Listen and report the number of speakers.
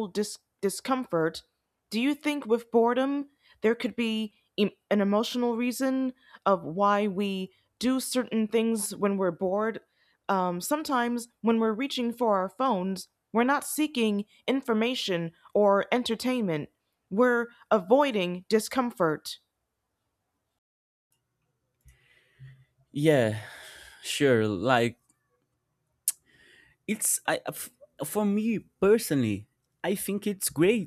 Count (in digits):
2